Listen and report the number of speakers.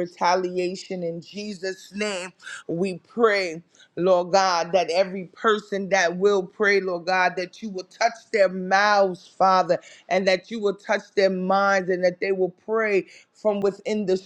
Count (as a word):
one